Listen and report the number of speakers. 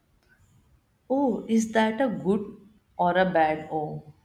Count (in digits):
1